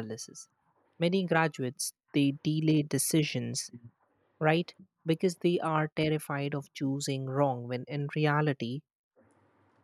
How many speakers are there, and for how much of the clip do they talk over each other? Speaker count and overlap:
1, no overlap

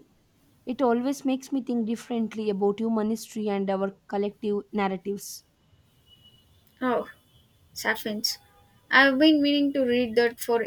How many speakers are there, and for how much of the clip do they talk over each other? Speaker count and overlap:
2, no overlap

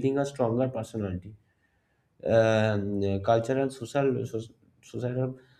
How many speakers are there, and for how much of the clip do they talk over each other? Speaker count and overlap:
1, no overlap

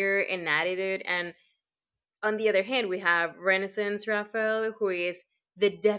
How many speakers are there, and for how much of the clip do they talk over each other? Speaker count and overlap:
1, no overlap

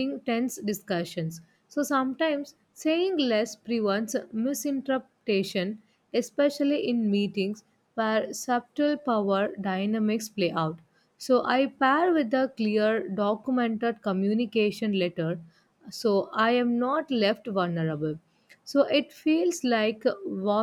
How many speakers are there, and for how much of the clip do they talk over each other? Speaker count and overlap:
1, no overlap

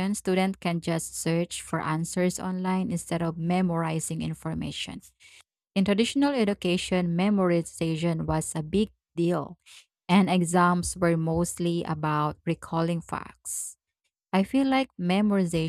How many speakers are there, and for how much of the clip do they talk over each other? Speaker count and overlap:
1, no overlap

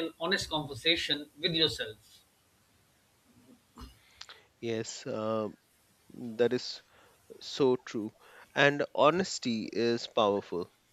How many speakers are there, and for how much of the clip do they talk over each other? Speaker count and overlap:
2, no overlap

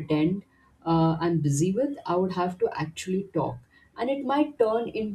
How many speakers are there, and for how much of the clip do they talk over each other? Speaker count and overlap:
1, no overlap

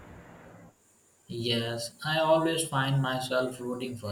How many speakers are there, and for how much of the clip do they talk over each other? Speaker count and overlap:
1, no overlap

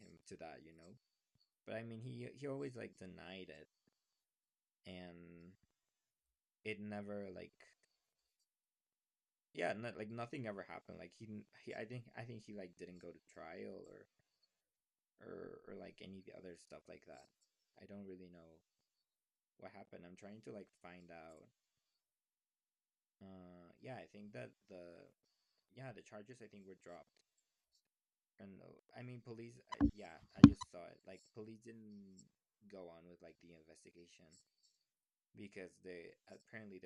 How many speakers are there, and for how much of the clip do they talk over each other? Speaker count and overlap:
1, no overlap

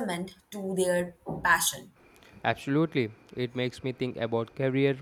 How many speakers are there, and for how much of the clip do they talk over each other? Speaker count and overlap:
2, no overlap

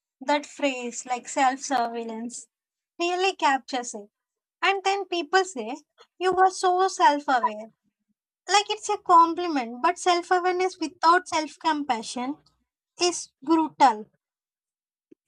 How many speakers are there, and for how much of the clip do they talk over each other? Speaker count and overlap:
1, no overlap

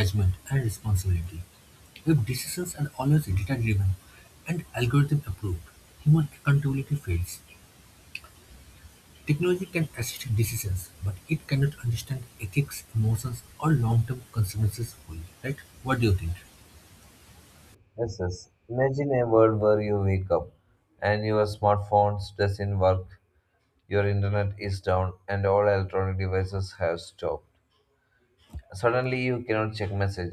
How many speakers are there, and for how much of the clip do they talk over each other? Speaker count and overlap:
2, no overlap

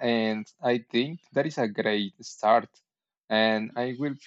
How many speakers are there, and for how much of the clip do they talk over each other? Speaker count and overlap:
1, no overlap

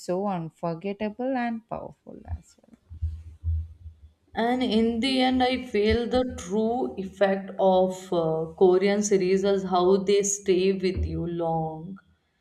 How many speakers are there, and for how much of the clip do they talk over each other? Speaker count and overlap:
2, no overlap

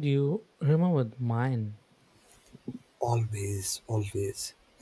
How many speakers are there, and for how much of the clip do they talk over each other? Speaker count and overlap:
2, no overlap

